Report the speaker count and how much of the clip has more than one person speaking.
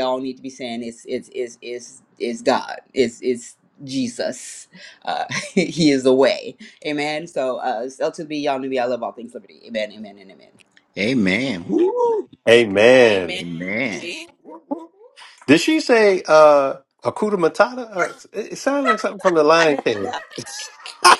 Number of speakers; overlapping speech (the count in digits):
3, under 1%